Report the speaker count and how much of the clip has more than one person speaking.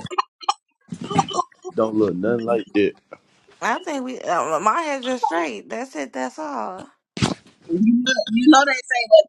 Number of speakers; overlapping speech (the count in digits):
3, no overlap